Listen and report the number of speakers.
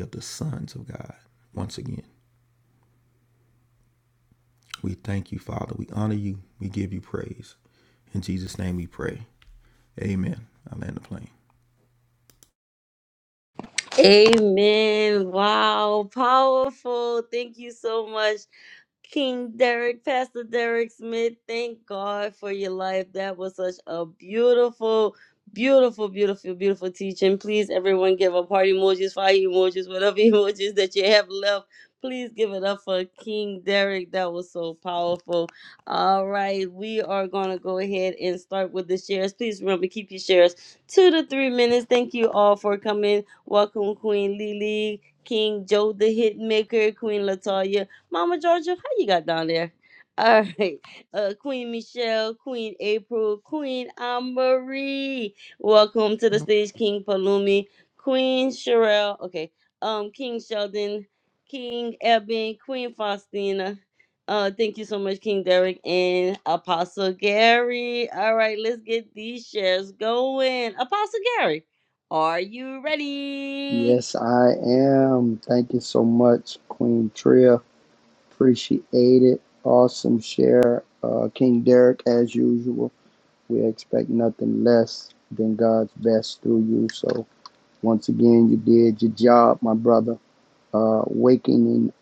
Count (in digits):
3